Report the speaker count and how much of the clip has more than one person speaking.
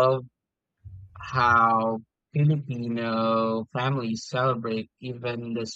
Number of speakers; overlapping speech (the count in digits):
1, no overlap